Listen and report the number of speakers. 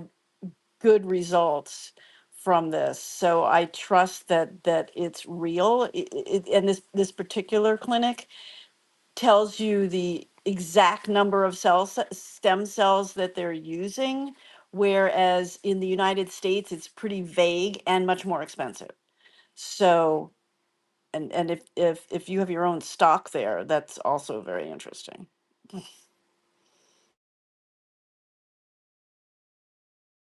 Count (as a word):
one